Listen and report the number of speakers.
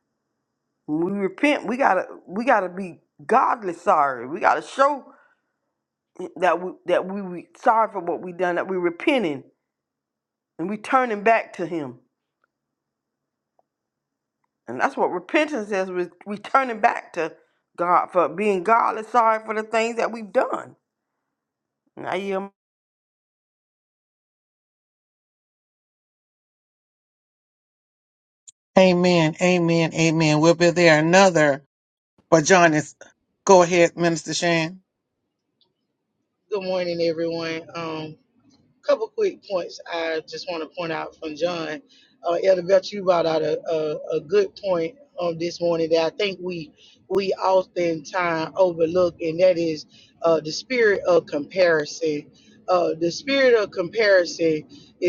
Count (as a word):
three